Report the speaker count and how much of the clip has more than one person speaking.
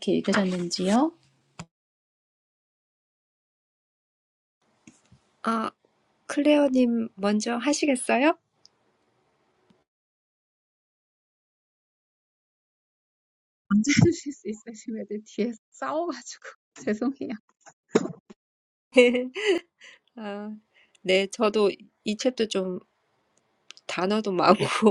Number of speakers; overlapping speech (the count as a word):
three, no overlap